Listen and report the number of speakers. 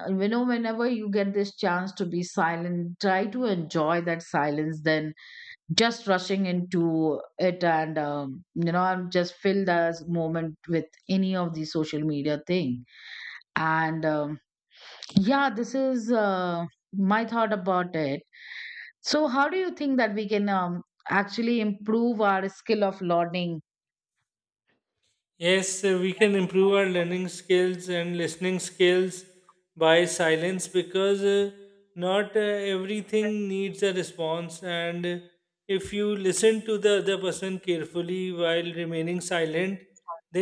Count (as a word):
two